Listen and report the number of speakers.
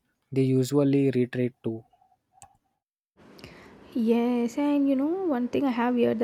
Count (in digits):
2